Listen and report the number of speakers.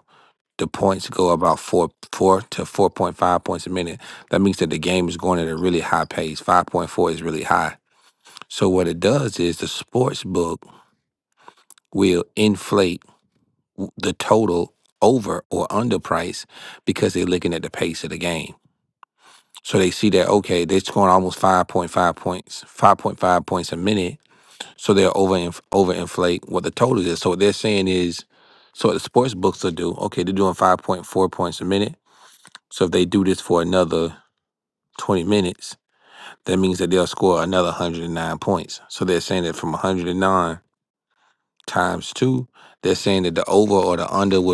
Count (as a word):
one